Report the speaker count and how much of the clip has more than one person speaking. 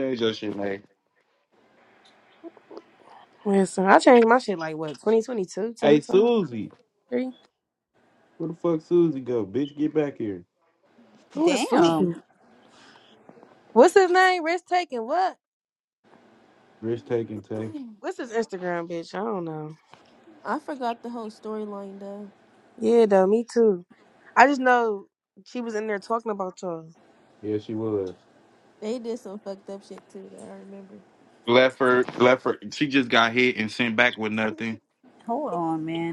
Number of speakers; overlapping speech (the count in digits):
4, about 3%